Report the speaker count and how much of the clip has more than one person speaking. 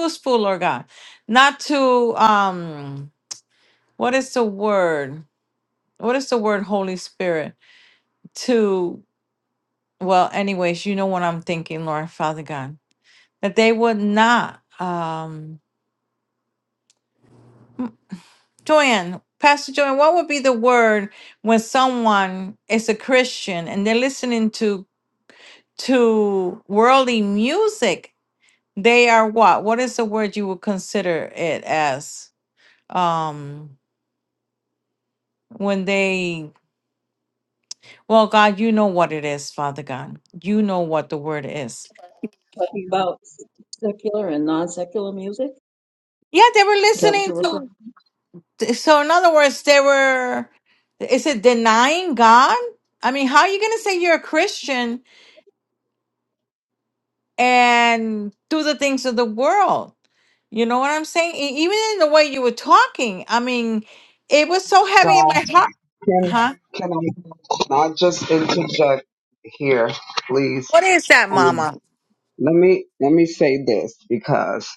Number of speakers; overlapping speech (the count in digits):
3, about 1%